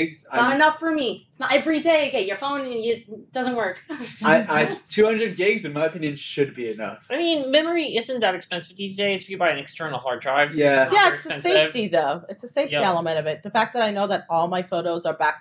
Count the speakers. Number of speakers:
four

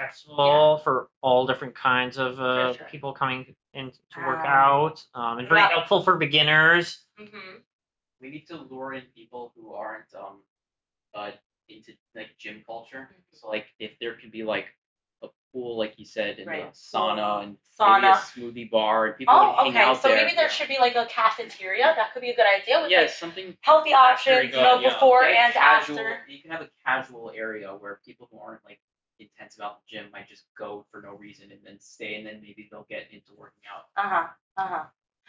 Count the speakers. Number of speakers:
three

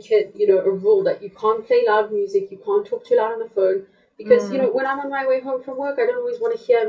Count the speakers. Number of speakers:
one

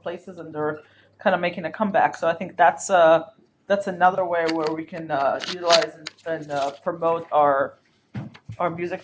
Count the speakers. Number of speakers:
one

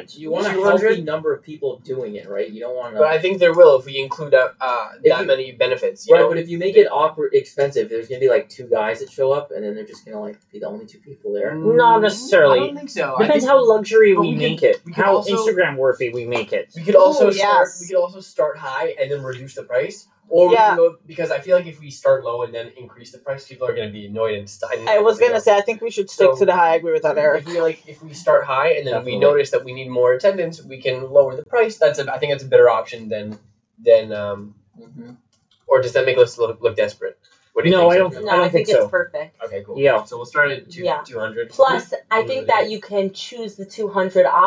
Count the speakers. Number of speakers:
five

